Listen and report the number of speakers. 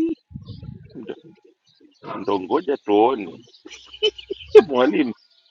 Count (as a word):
one